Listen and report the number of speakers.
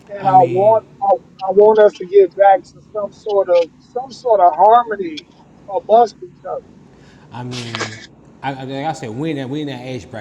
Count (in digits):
2